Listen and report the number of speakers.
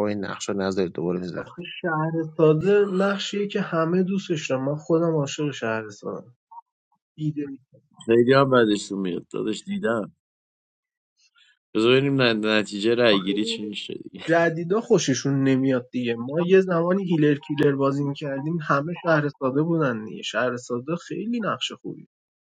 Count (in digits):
3